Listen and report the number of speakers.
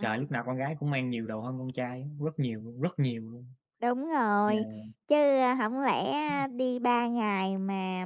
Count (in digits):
2